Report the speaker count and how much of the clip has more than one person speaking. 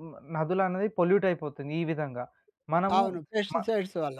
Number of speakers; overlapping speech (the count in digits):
2, about 6%